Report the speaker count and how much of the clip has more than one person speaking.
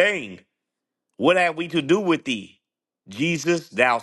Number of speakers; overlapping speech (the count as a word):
one, no overlap